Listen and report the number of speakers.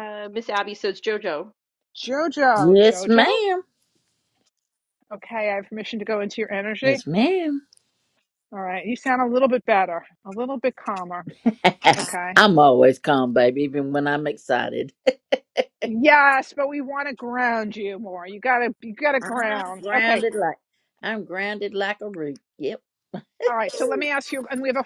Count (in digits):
3